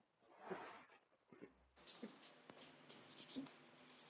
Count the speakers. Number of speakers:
zero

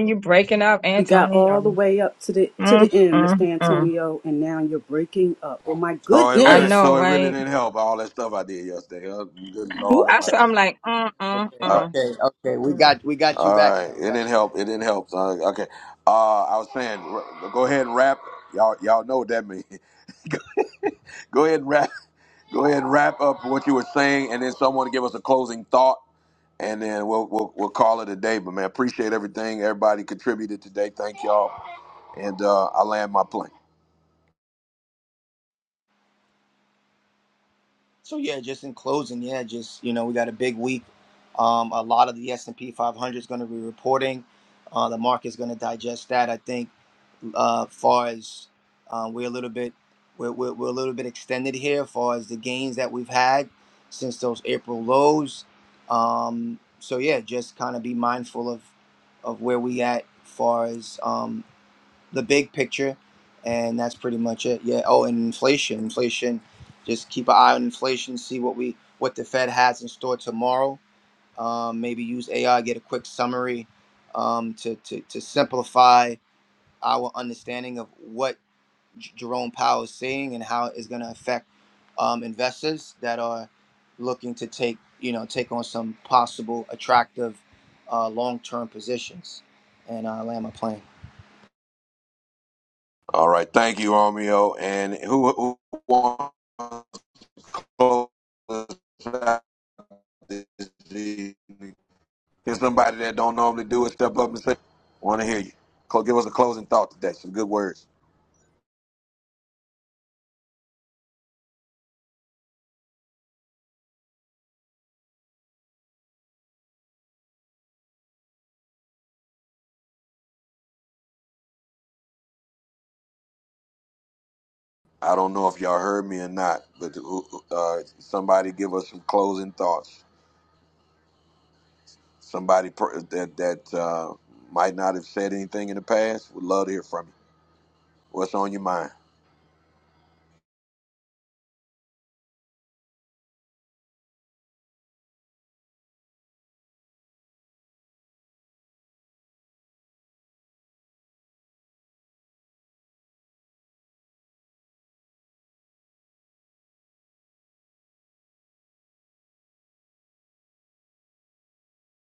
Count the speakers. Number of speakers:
four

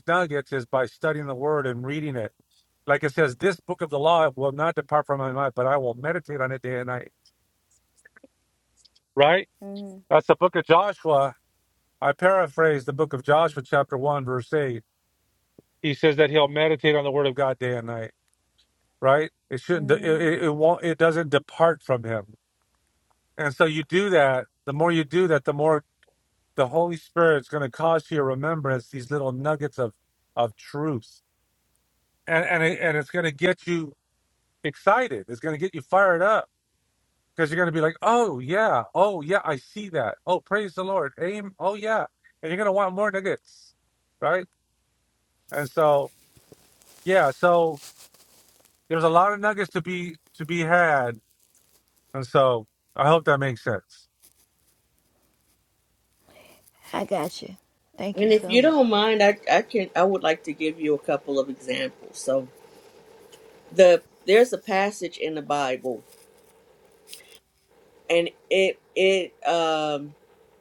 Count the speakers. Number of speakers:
three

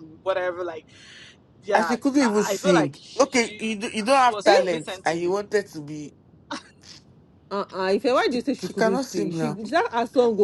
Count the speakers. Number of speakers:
three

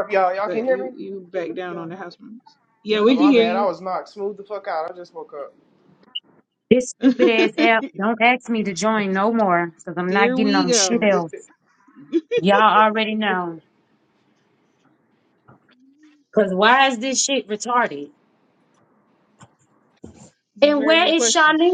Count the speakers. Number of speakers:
three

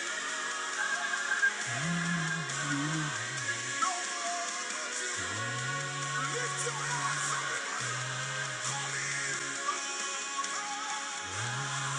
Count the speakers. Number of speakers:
zero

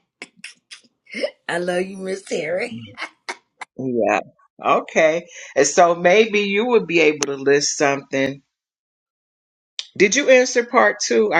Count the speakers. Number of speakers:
two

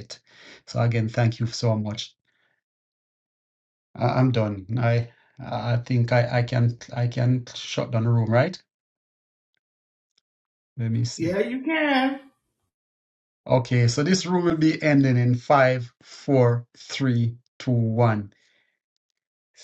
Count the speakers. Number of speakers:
two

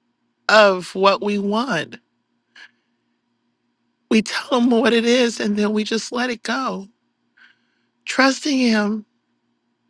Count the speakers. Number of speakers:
one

